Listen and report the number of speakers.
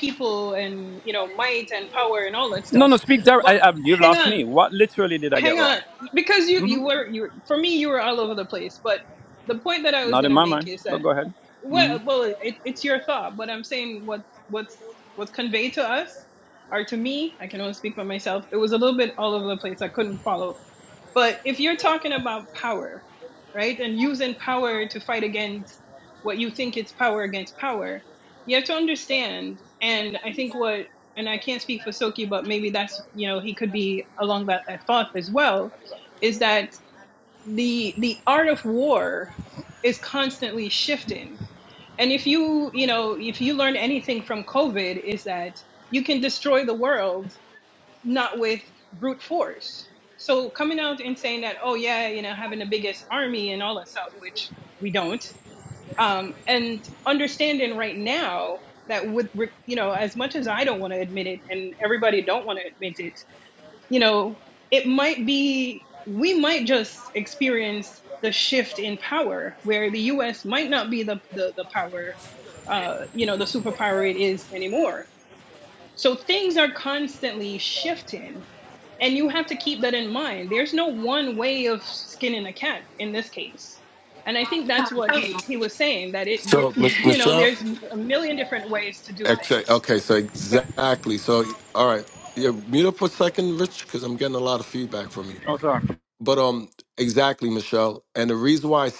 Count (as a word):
three